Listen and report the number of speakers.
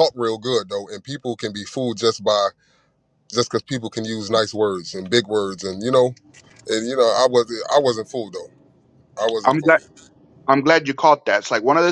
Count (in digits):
2